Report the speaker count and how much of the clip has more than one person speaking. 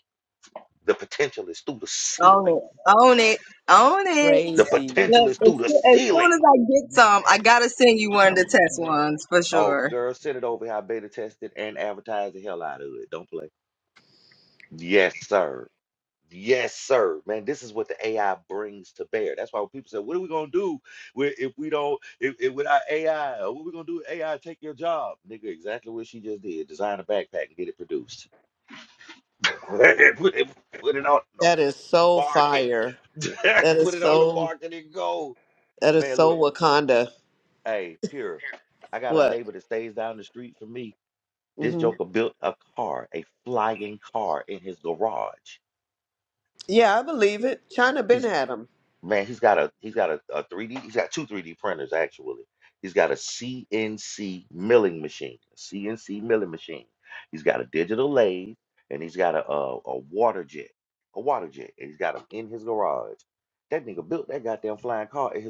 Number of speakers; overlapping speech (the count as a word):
three, about 8%